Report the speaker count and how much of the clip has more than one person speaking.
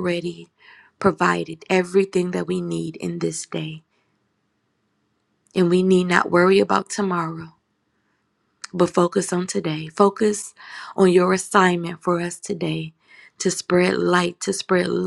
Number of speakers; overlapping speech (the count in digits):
1, no overlap